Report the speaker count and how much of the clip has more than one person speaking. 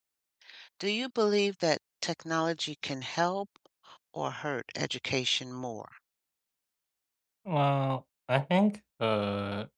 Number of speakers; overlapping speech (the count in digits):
2, no overlap